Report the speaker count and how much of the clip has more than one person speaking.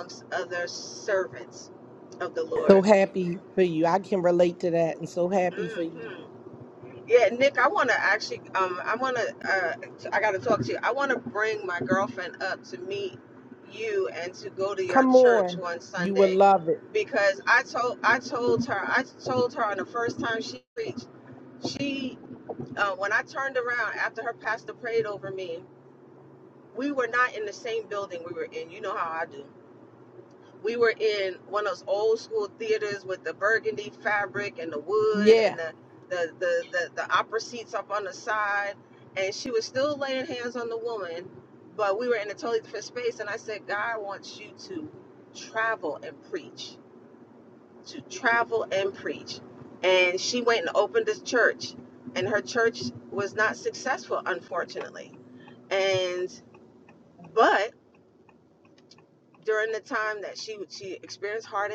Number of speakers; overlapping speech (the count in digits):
2, about 3%